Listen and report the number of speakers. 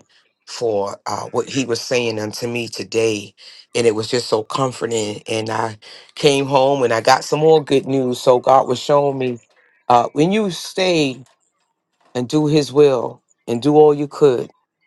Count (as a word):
one